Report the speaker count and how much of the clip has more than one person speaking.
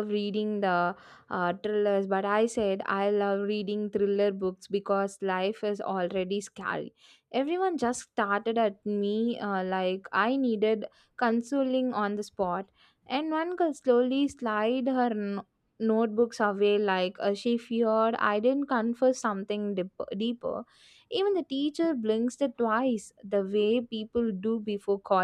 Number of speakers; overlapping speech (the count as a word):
one, no overlap